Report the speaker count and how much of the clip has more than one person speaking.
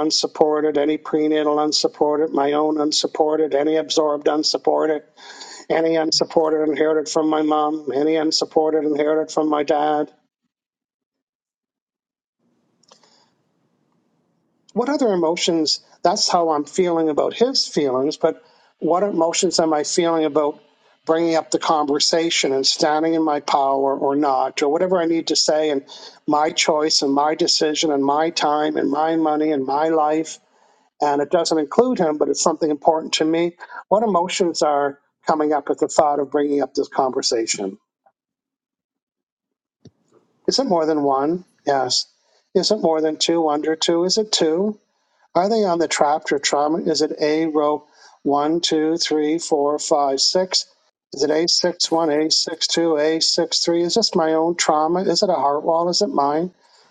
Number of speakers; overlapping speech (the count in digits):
1, no overlap